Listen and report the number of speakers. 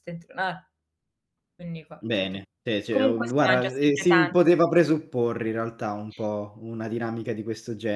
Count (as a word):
two